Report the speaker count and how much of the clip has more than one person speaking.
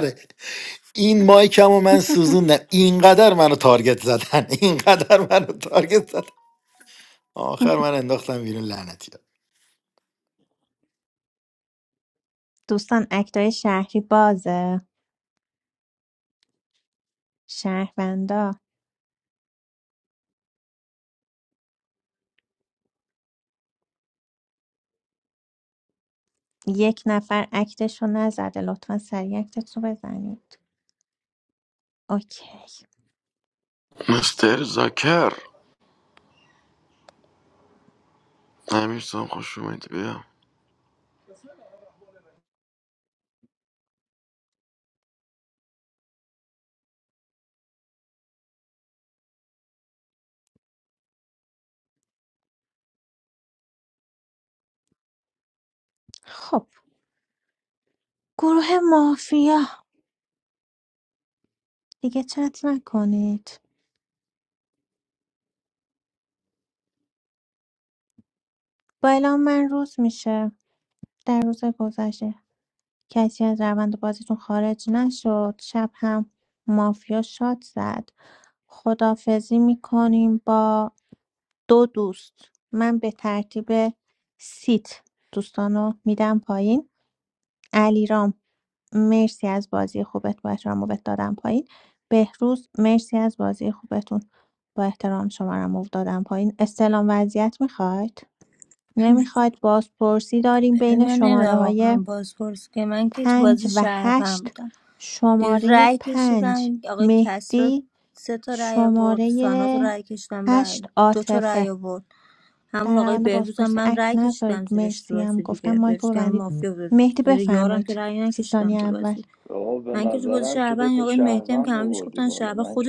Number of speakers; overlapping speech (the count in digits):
5, about 12%